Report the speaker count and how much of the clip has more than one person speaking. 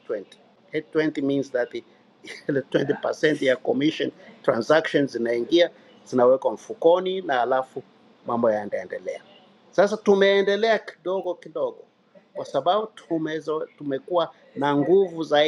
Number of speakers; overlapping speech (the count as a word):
one, no overlap